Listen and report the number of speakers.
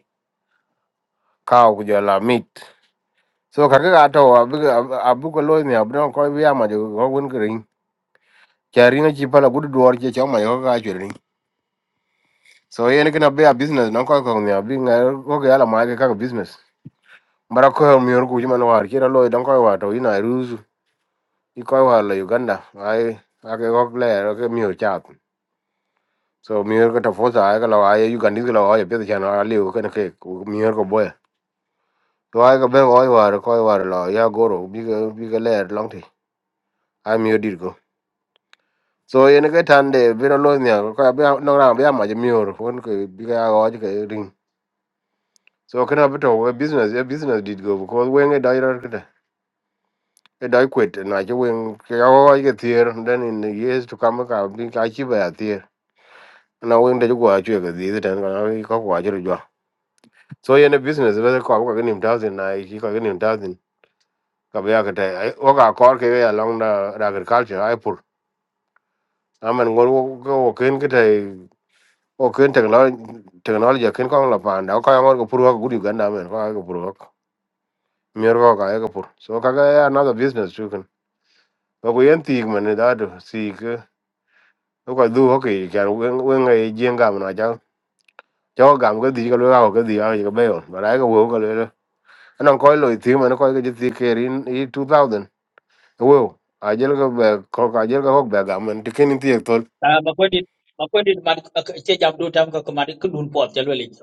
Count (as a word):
two